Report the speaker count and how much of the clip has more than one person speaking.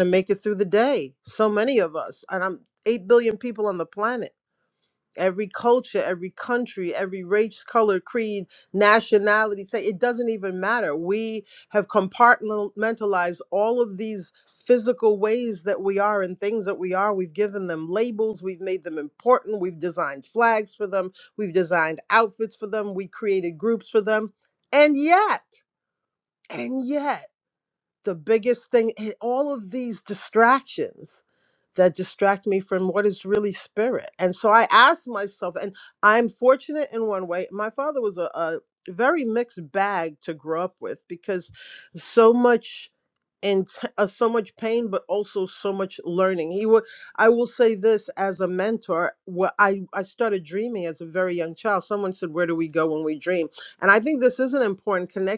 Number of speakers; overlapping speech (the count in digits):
1, no overlap